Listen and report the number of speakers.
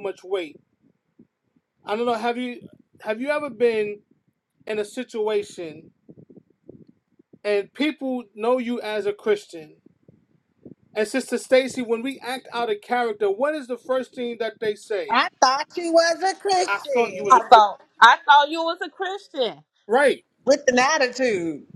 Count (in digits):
3